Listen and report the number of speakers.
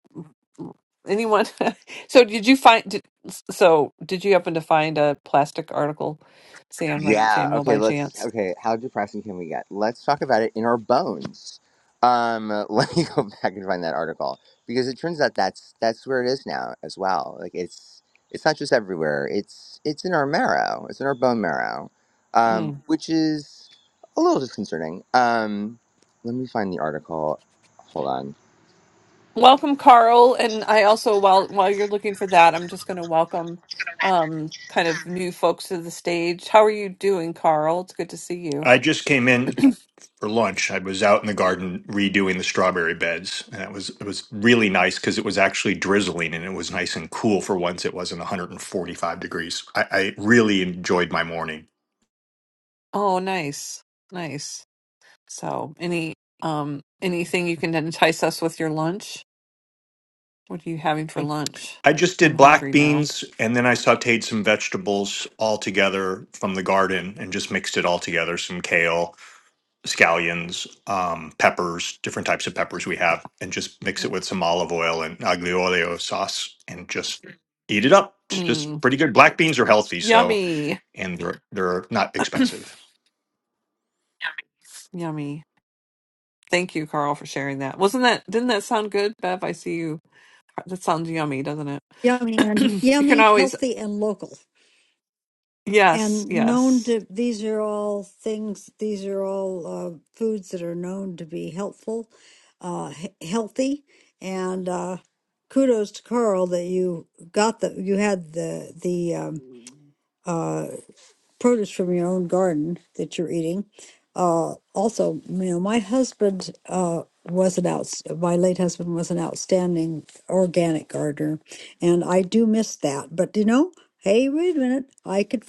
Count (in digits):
4